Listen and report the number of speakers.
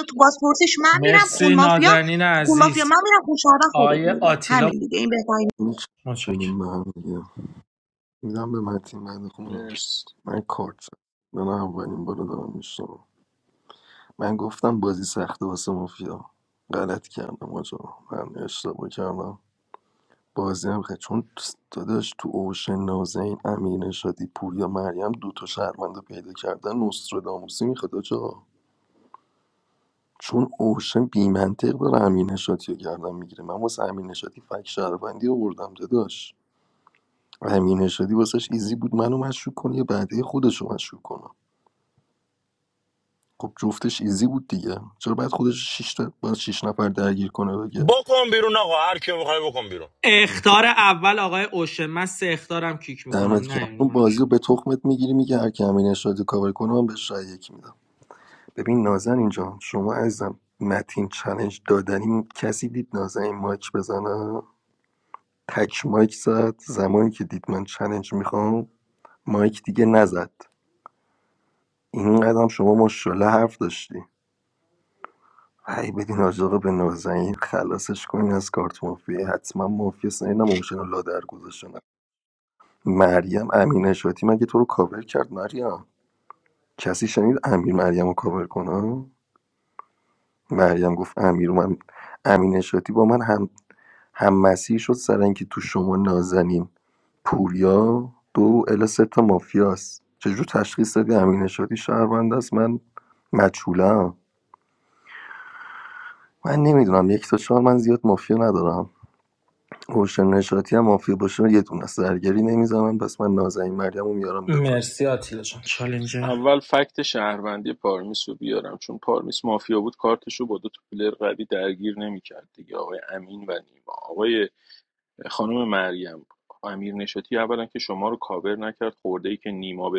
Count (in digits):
5